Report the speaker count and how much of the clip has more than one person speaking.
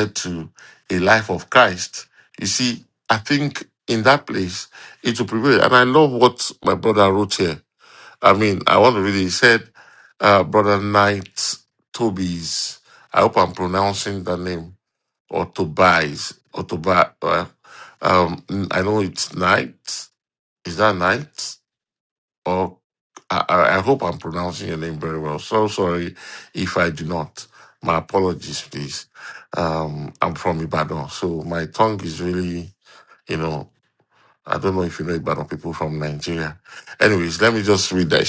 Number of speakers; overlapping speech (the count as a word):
one, no overlap